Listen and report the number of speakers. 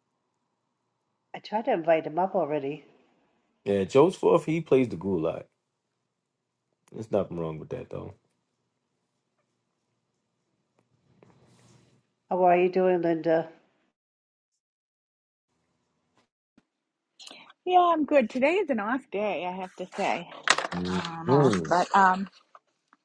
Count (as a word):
three